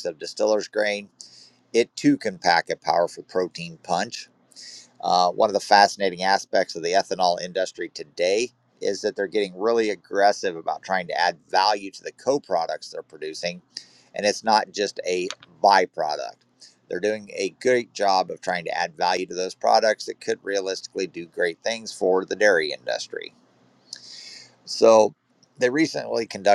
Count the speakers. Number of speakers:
one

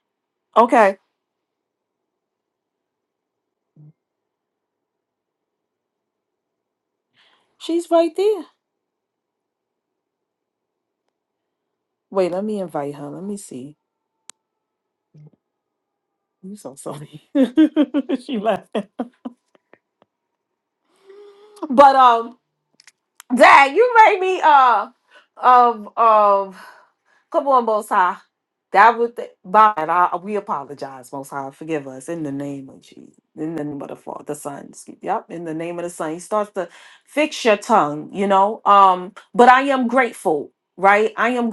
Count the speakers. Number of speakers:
one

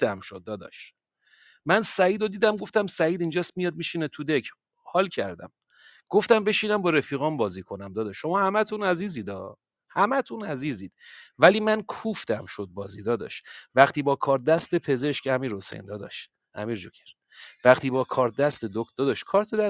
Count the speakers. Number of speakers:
one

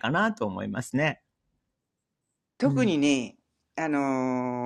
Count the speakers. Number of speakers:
two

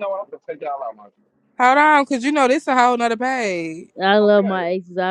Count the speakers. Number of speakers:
three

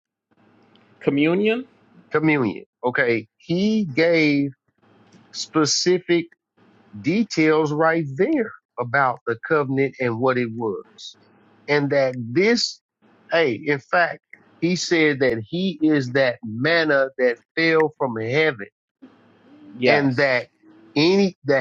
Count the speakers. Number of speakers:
two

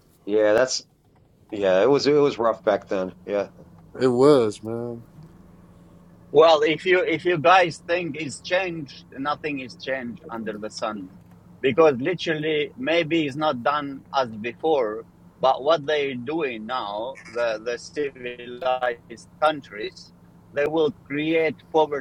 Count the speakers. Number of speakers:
three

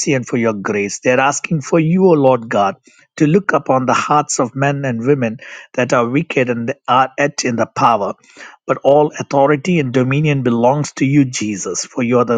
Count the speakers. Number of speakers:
one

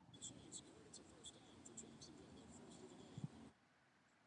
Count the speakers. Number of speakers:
zero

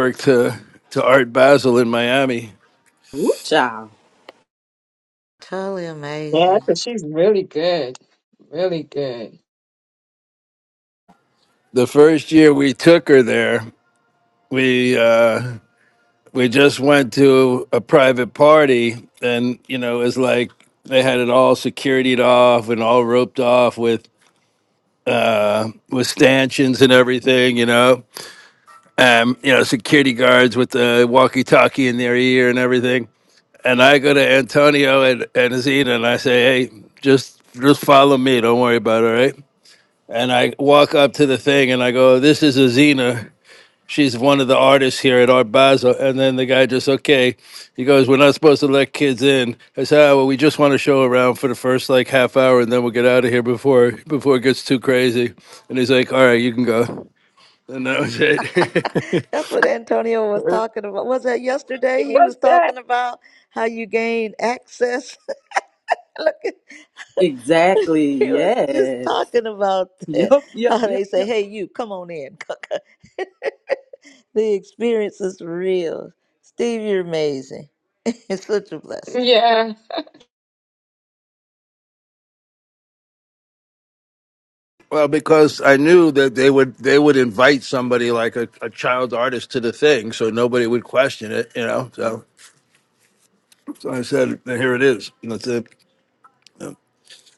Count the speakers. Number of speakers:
four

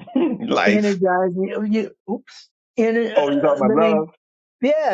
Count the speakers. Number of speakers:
two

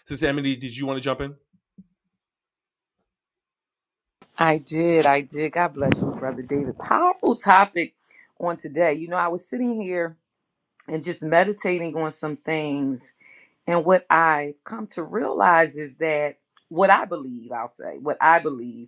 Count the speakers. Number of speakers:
two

